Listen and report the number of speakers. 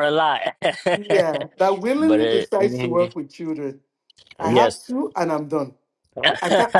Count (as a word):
two